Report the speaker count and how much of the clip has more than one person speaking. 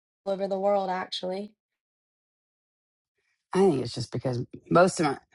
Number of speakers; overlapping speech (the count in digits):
2, no overlap